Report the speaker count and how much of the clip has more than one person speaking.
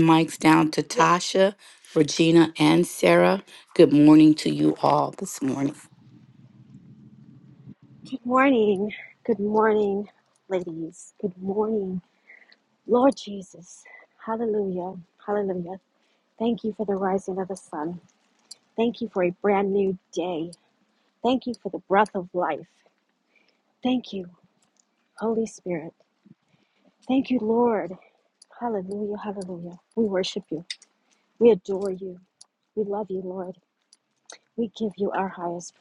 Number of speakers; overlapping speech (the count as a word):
two, under 1%